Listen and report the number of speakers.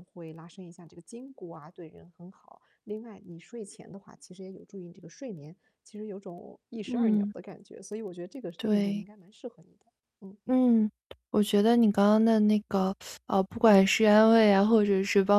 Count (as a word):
two